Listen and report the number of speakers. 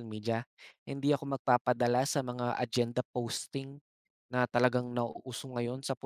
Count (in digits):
1